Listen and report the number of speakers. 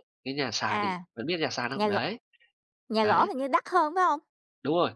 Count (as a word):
two